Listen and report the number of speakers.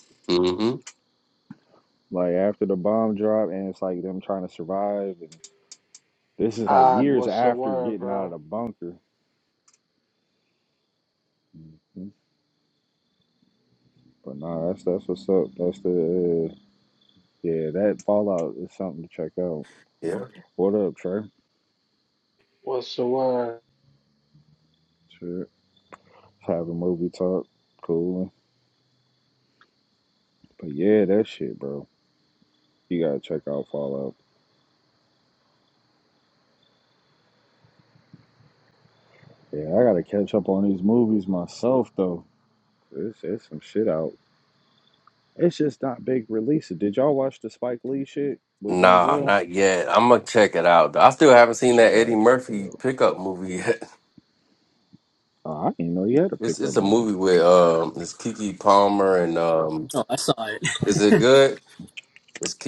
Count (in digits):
4